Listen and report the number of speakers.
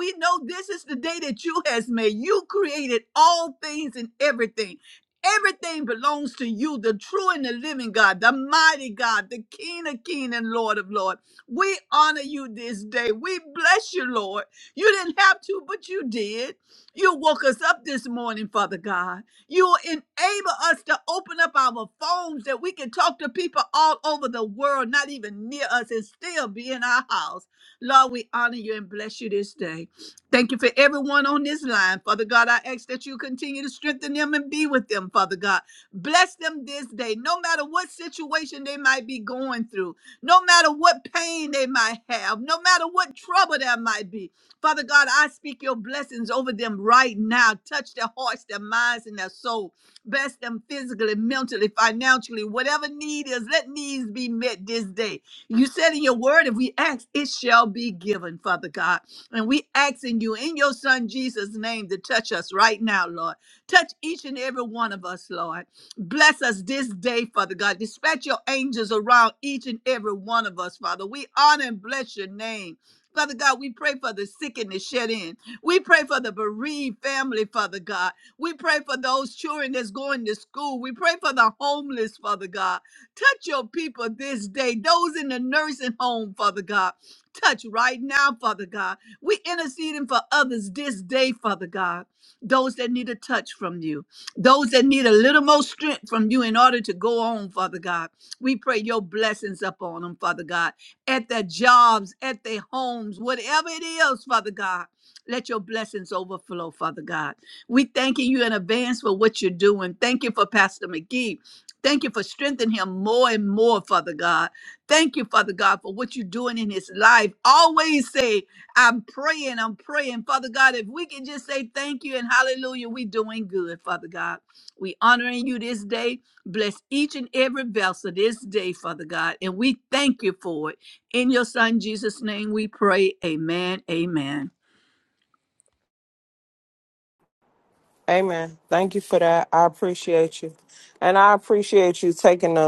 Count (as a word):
two